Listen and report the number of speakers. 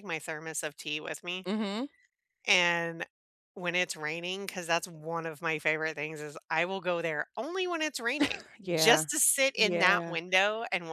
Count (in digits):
2